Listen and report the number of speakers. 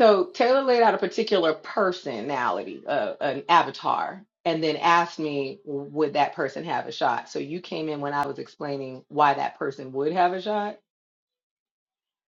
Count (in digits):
1